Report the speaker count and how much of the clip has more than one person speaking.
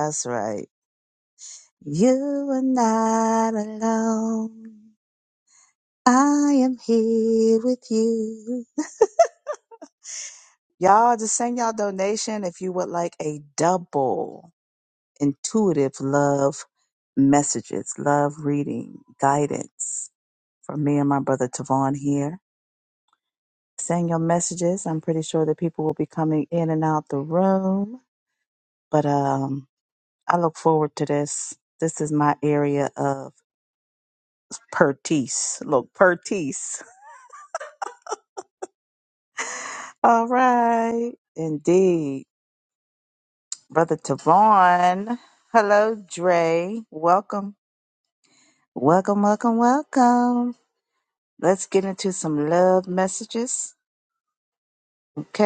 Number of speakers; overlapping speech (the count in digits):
1, no overlap